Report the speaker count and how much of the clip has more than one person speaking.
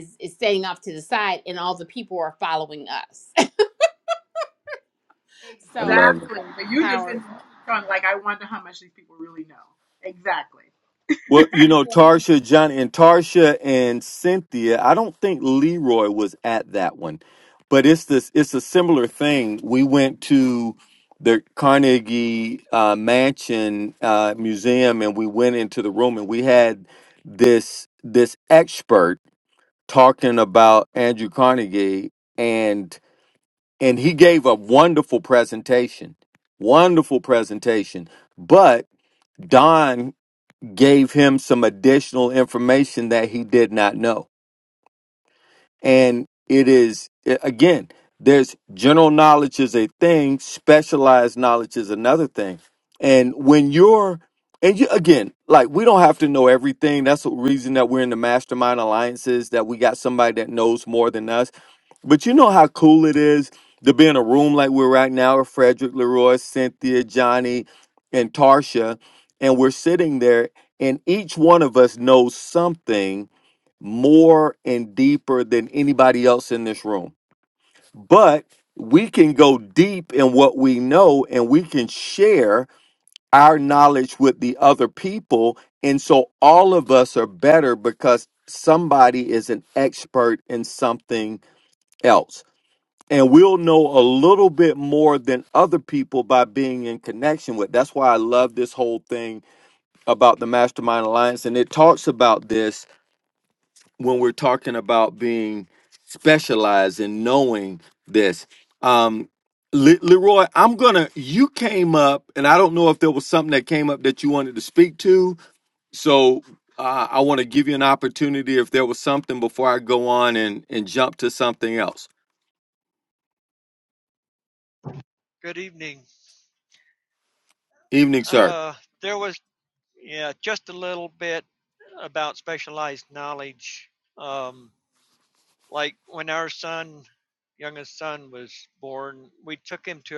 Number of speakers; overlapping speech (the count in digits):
4, about 1%